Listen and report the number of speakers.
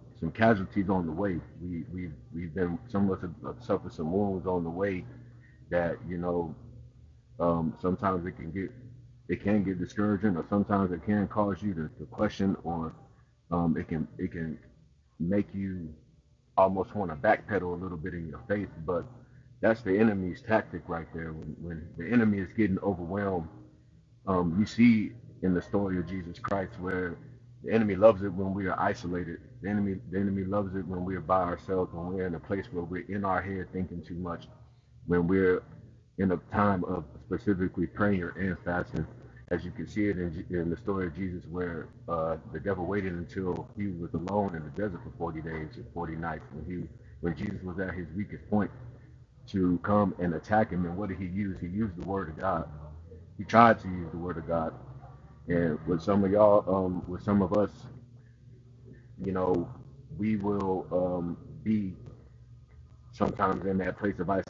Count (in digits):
1